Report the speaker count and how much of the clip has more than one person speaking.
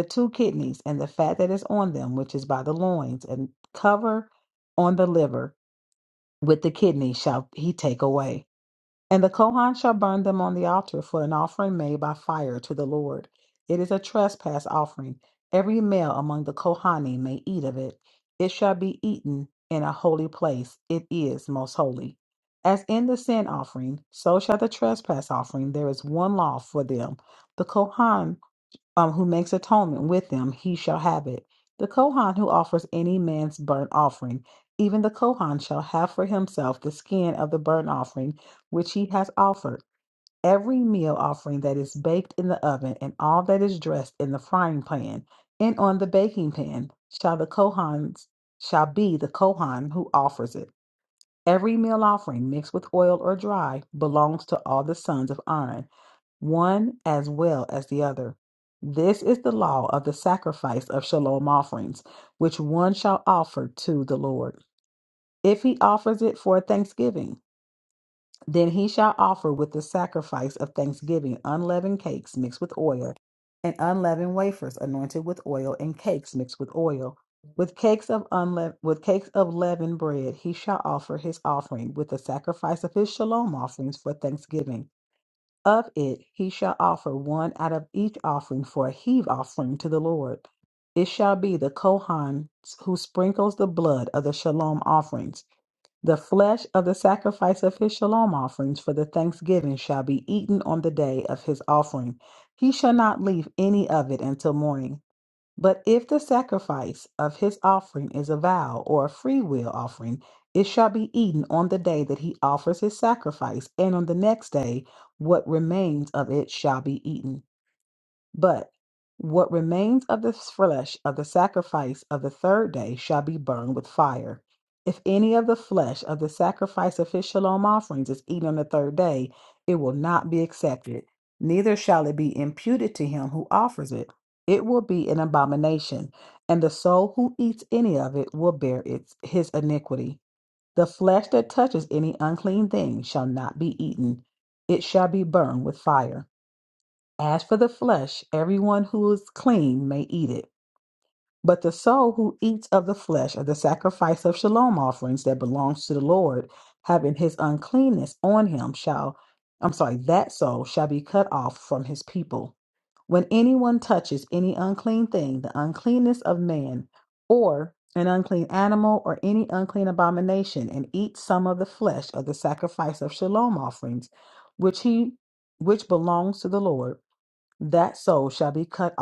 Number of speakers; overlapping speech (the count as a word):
one, no overlap